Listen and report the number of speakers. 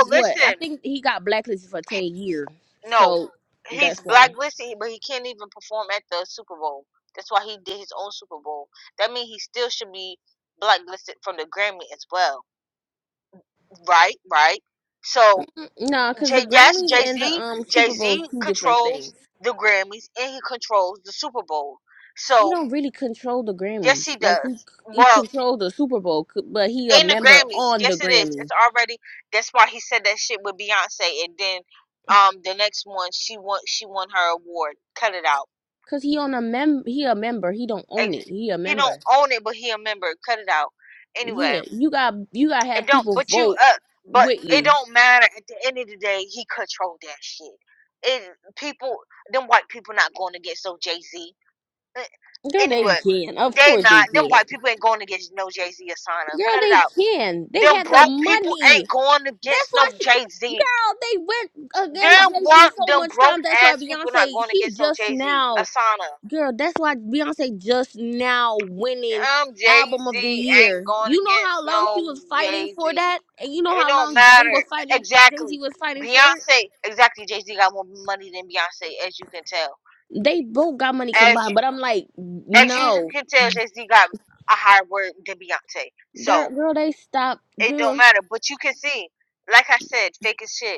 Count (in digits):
2